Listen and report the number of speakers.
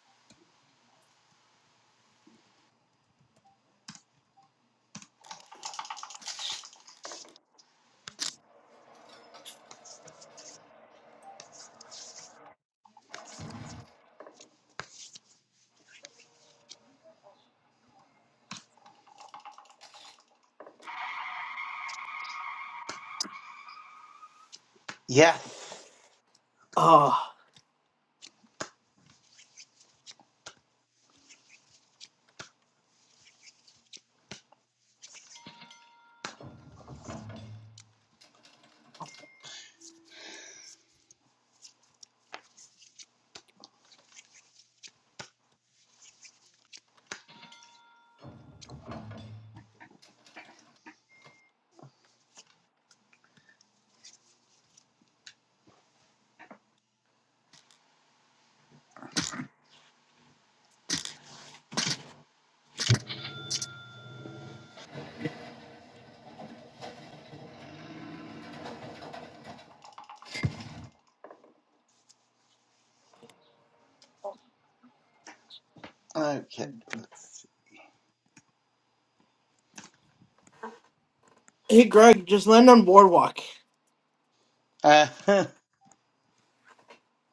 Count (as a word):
two